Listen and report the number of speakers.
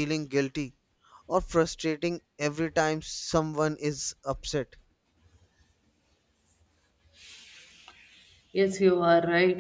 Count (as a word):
two